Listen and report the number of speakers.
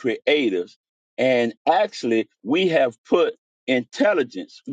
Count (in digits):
1